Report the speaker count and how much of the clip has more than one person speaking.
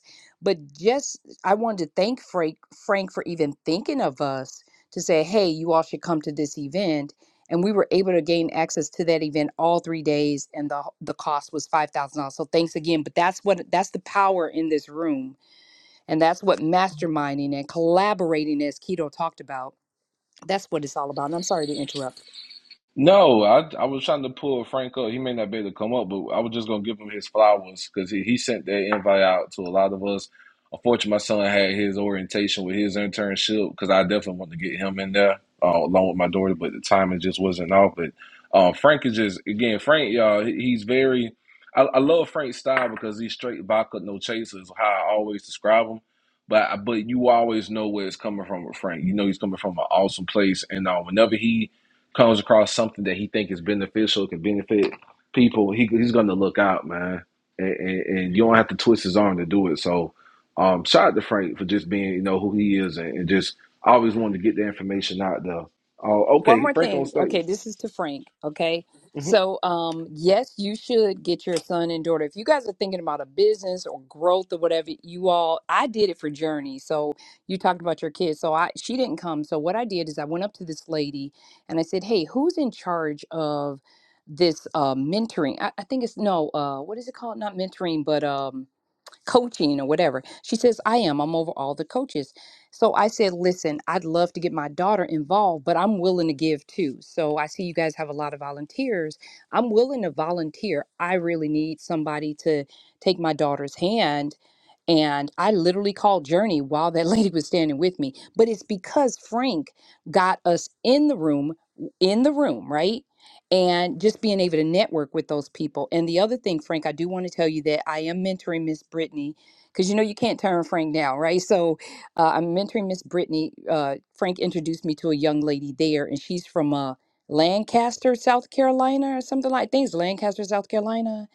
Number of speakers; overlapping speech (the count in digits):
2, about 1%